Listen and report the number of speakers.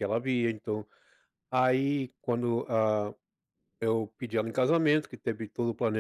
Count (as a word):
one